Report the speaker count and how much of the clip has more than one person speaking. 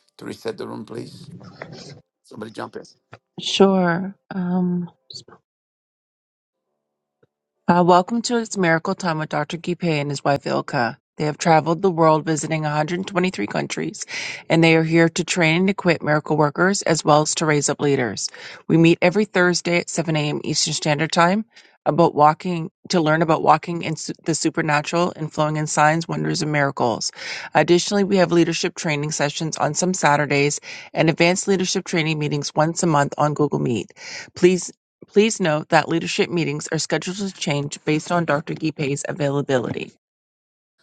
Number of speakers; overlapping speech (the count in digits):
2, no overlap